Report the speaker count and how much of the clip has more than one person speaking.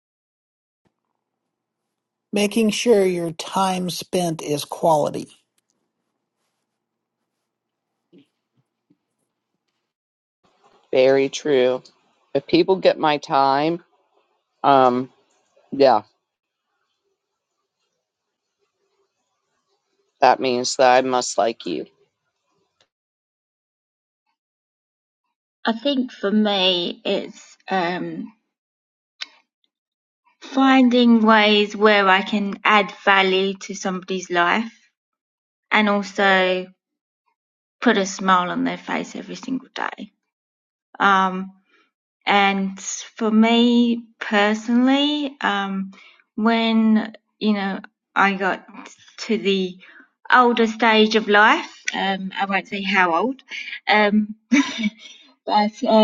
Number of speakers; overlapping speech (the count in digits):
3, no overlap